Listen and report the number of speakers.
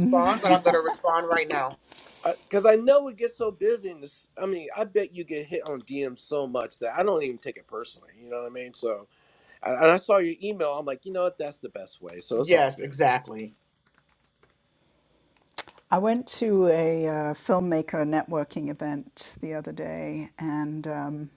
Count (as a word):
three